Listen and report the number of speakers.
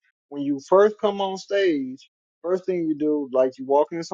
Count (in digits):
1